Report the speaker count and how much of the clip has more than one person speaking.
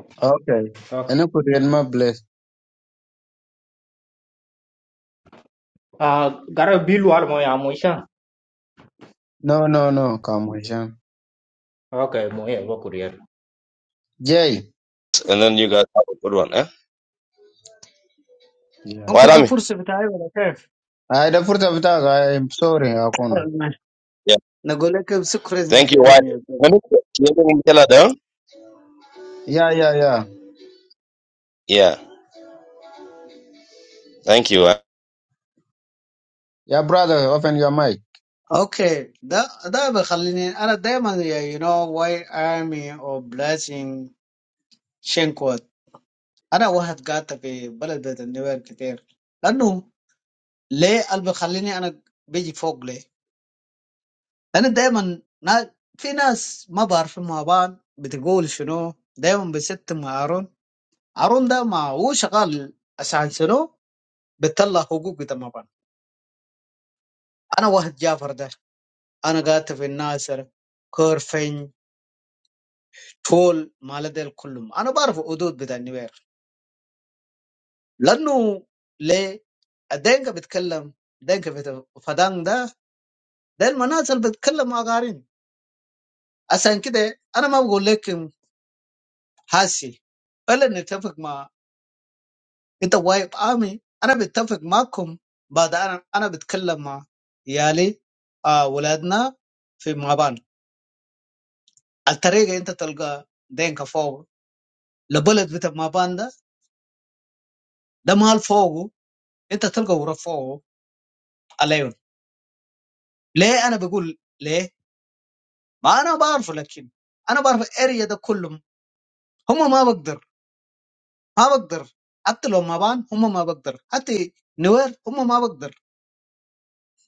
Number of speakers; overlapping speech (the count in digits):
4, about 1%